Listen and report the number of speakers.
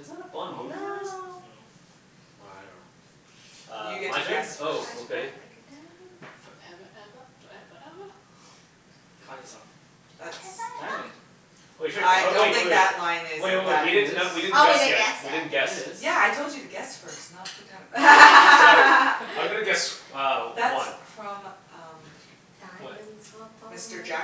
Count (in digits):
4